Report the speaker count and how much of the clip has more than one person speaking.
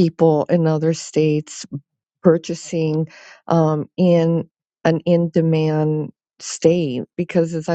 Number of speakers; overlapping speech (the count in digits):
1, no overlap